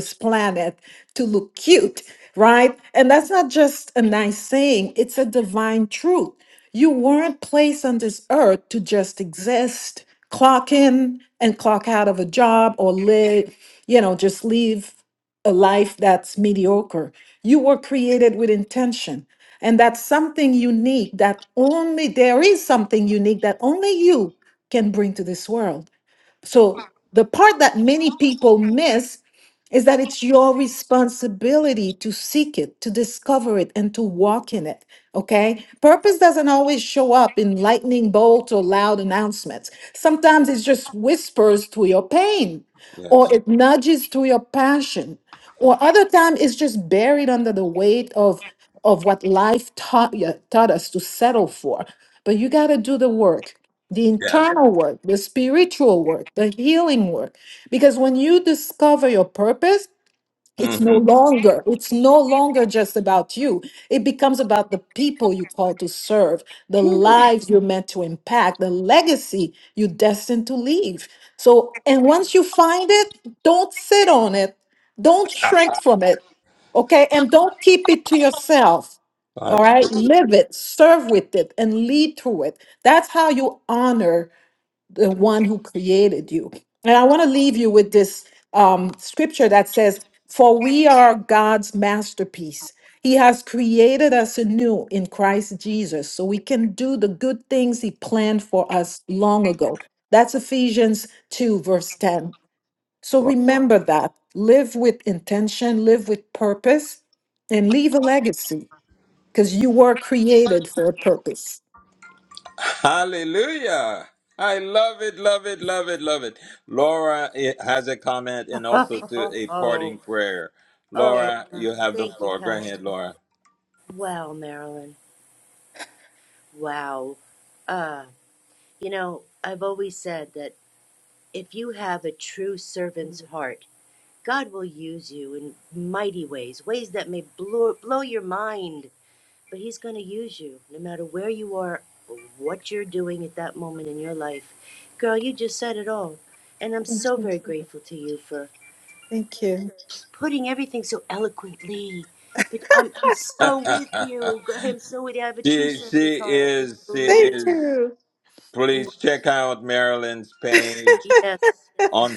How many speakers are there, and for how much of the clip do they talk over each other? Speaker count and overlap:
three, about 5%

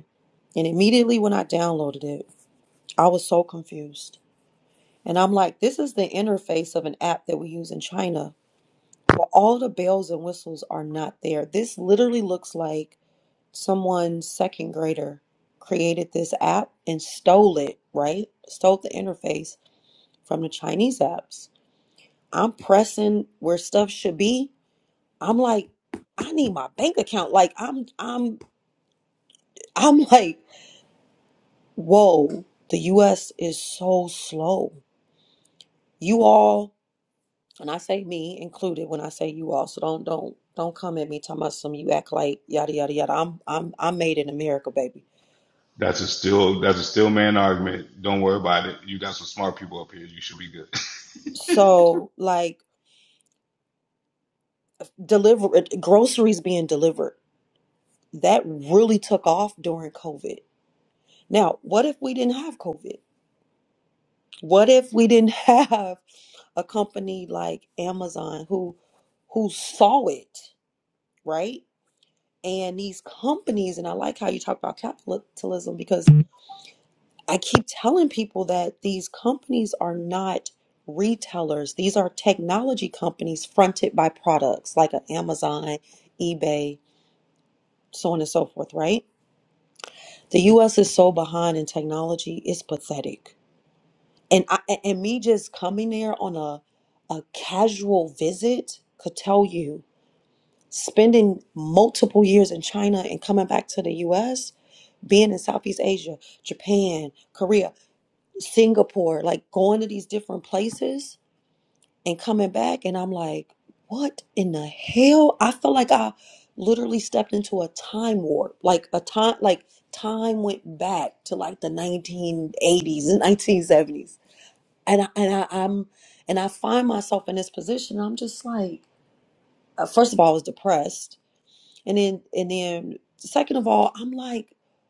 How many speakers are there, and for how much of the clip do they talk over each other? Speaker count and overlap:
two, no overlap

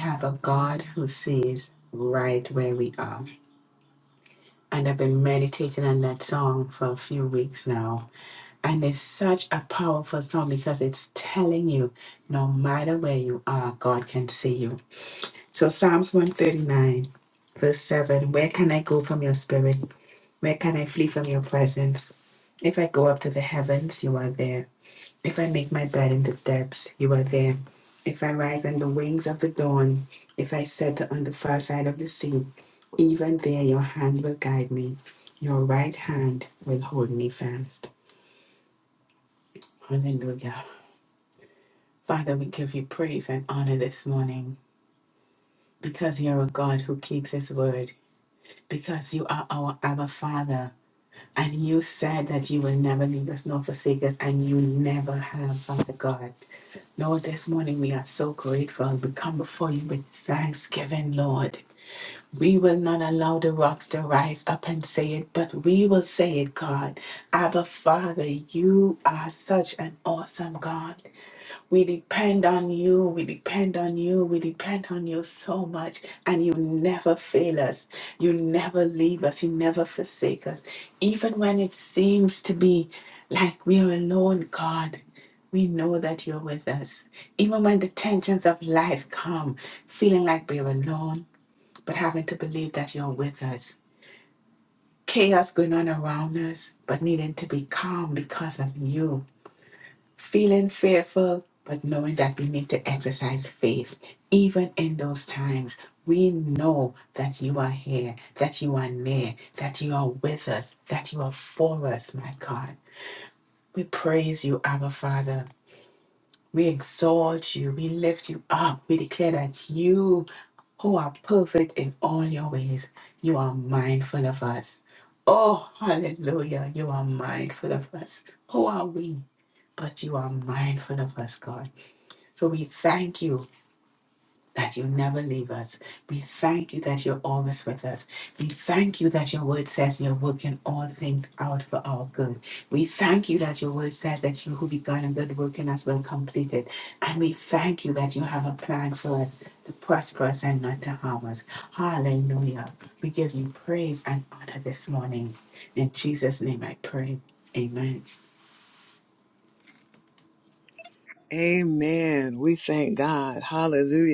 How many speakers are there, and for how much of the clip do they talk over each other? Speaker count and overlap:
two, no overlap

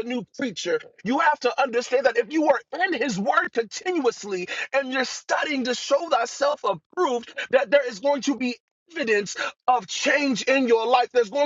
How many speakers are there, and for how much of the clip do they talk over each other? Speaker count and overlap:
one, no overlap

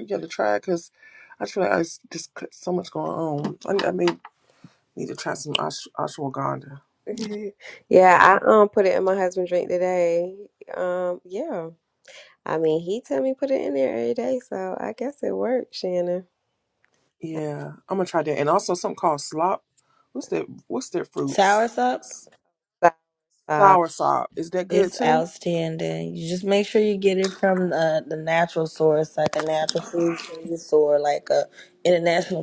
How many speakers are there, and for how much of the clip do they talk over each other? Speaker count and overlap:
three, about 2%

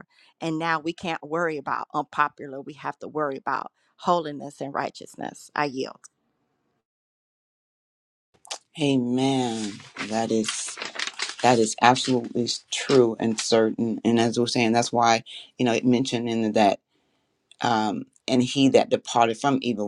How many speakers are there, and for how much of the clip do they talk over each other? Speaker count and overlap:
two, no overlap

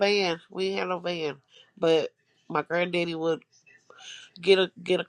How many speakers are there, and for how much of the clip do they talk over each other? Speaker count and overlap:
one, no overlap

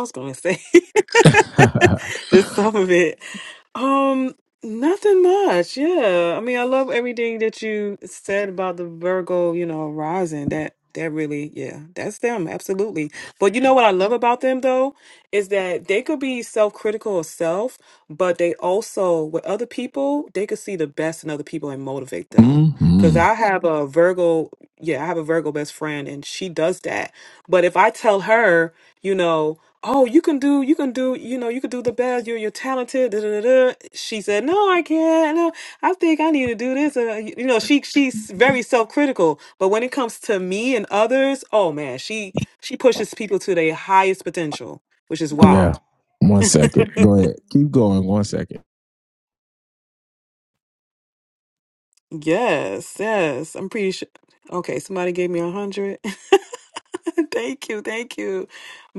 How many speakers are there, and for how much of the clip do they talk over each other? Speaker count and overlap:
two, about 1%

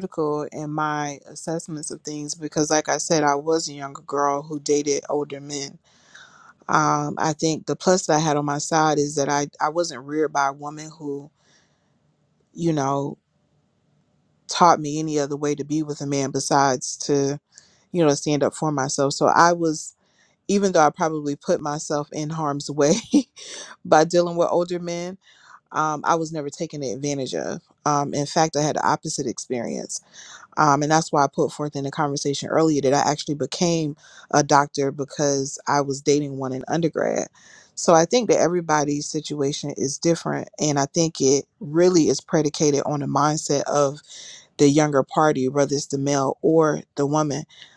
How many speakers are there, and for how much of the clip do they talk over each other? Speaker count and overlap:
one, no overlap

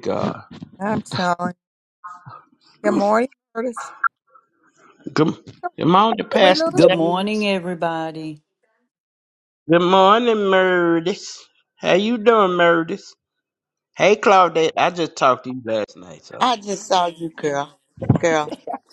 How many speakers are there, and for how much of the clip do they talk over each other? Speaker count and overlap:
four, about 6%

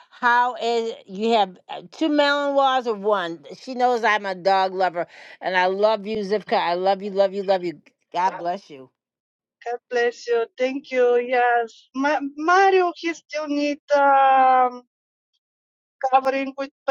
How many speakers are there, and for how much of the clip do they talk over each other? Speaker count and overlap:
two, no overlap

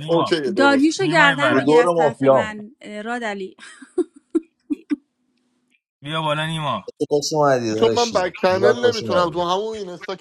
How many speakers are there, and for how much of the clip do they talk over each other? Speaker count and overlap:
four, about 37%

